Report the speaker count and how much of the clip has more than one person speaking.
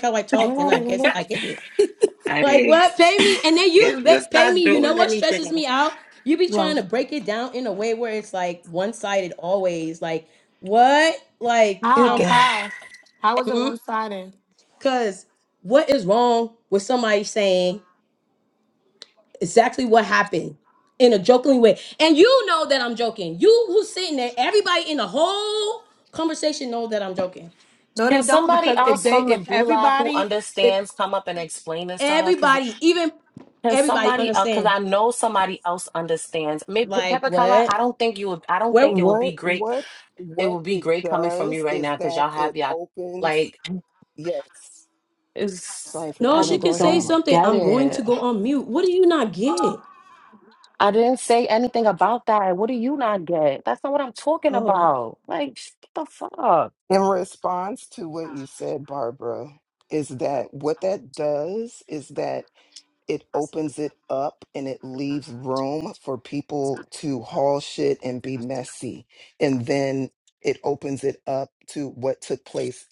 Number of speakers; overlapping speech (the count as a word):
four, about 19%